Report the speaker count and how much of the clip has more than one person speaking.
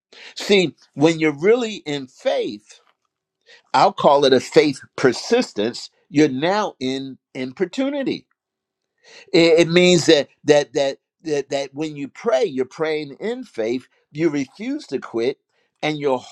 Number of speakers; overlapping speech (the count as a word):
one, no overlap